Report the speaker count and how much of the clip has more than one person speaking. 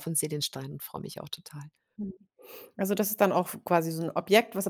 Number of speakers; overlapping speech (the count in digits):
2, no overlap